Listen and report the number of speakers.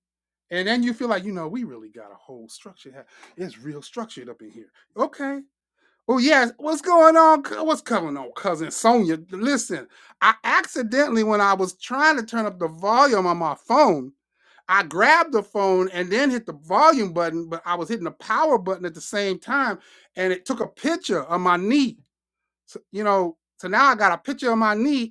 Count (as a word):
one